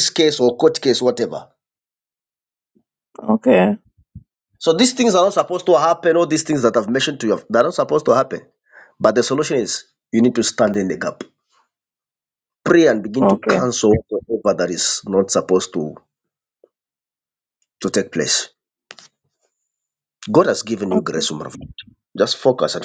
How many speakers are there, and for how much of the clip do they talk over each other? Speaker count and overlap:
2, about 3%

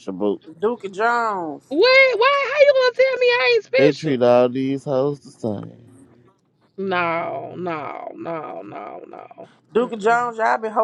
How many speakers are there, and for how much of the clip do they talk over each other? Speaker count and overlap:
3, about 7%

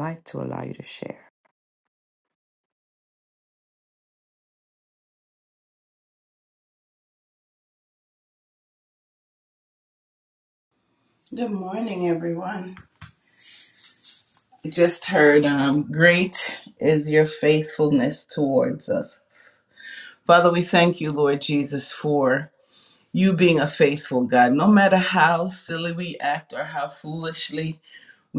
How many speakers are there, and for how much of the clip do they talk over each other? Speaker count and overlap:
2, no overlap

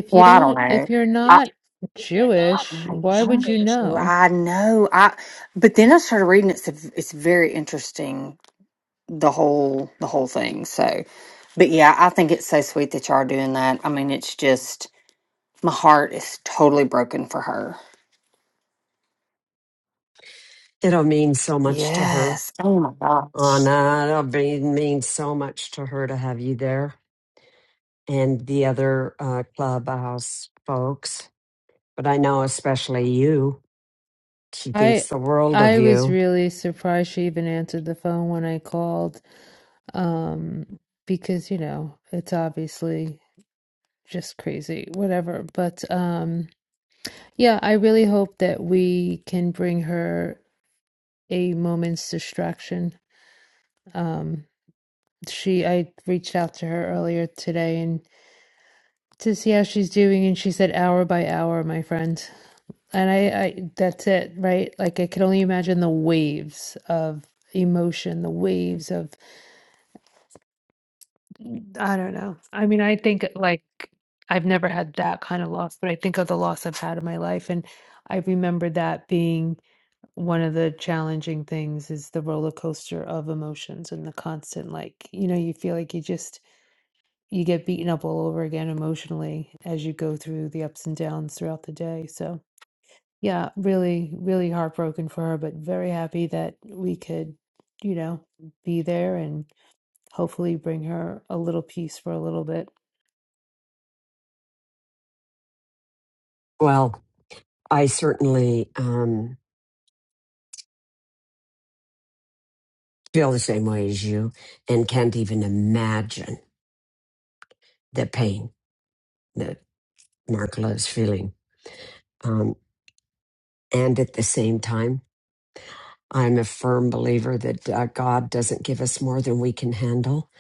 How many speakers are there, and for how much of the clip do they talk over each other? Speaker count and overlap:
3, about 2%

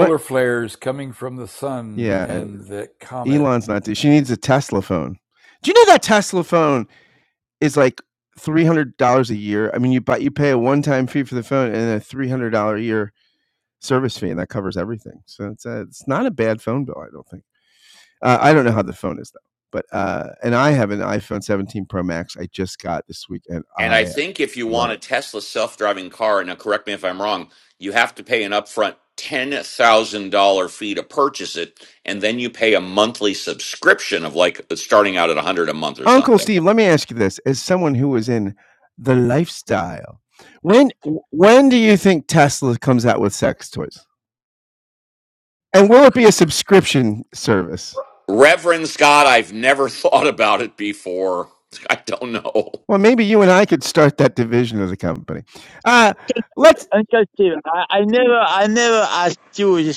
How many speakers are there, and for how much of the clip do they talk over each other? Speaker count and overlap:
4, about 3%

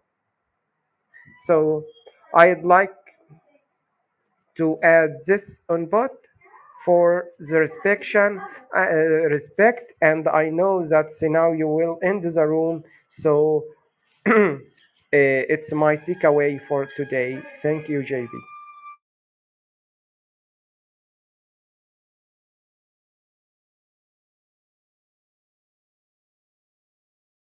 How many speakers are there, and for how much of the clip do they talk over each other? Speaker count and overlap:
1, no overlap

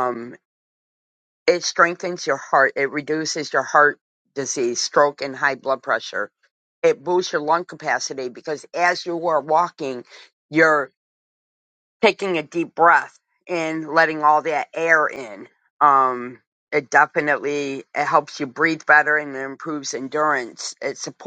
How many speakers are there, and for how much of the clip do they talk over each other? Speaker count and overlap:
1, no overlap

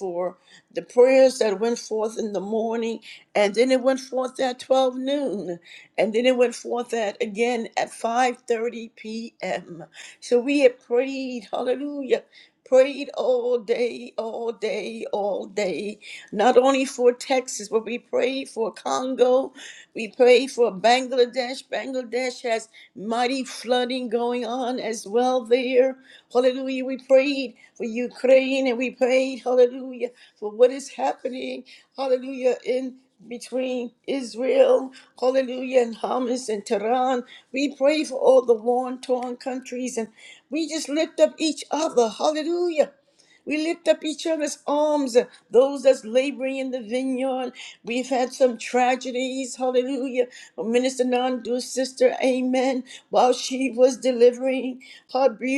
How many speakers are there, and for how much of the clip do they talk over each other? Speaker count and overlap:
1, no overlap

